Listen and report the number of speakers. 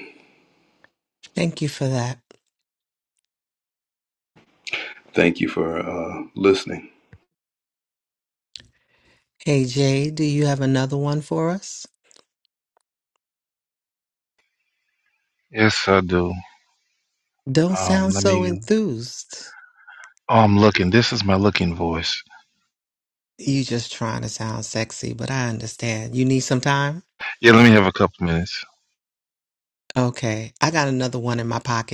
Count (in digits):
3